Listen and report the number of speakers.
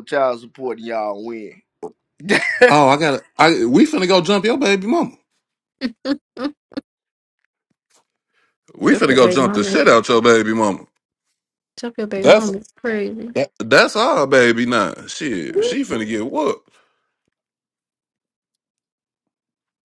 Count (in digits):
3